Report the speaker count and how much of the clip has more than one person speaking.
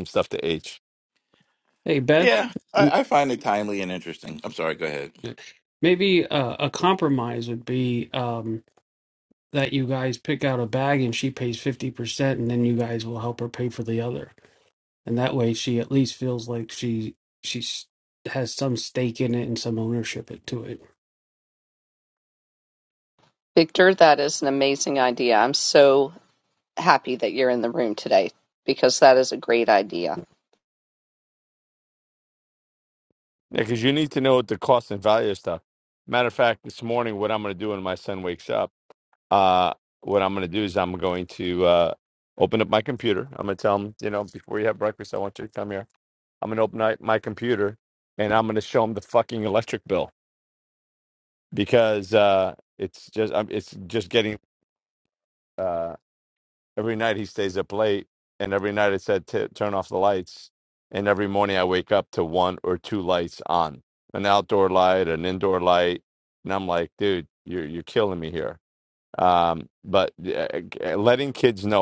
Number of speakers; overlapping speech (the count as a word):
four, under 1%